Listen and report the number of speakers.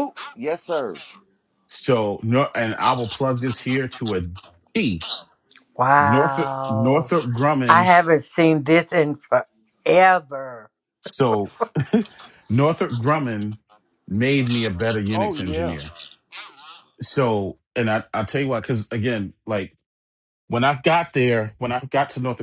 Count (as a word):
three